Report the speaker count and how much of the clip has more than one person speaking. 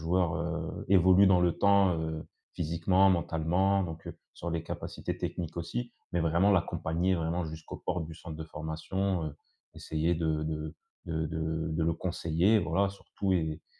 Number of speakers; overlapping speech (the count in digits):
1, no overlap